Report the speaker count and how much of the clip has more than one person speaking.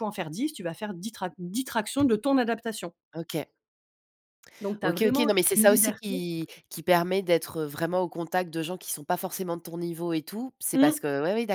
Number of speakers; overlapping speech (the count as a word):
two, about 14%